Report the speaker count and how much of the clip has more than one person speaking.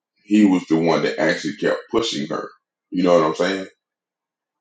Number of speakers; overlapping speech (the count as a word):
one, no overlap